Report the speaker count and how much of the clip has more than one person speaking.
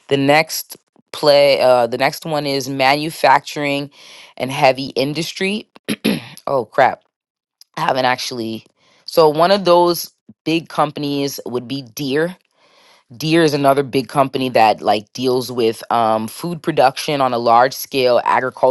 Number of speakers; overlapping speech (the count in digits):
1, no overlap